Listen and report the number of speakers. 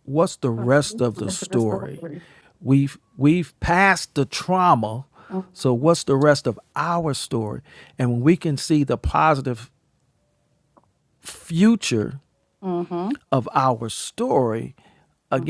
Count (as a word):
two